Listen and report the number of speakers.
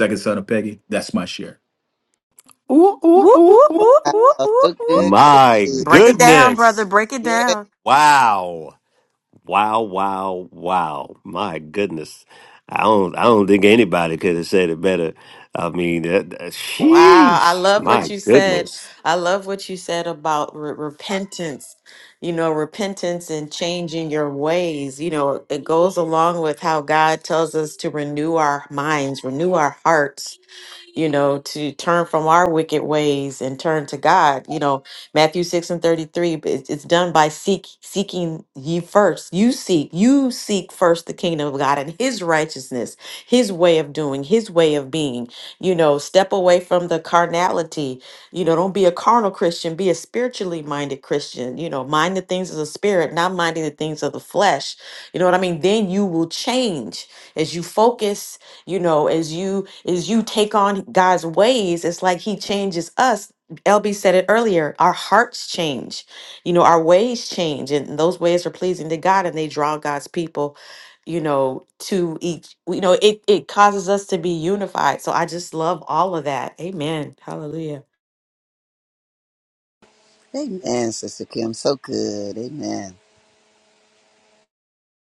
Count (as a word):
four